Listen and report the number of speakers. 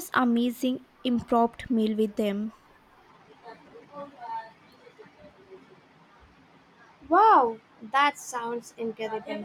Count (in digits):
2